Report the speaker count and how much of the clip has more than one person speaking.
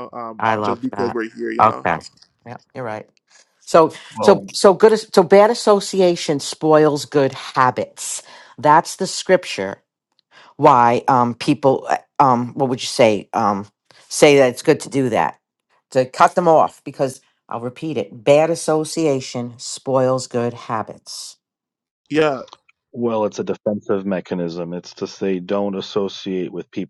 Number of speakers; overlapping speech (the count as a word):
three, about 5%